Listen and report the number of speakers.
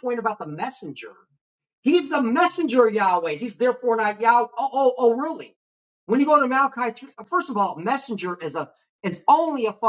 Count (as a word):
one